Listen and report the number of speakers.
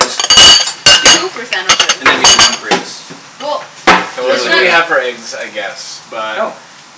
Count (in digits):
3